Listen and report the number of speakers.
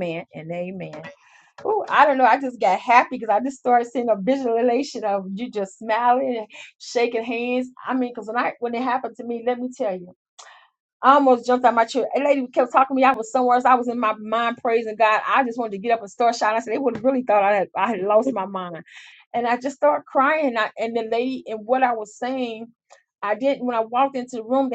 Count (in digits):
1